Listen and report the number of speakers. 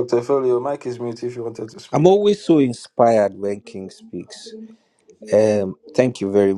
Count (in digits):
2